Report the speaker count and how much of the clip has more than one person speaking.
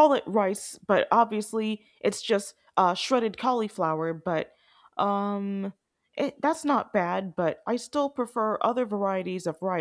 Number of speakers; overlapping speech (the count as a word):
one, no overlap